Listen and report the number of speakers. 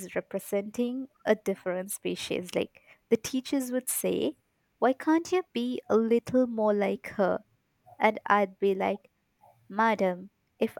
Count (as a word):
one